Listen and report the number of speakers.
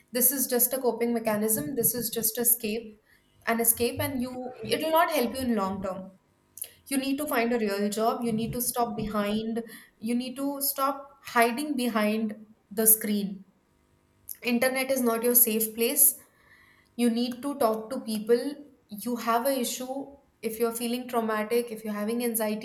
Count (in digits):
1